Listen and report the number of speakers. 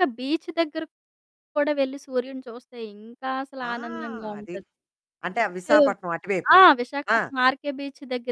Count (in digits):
2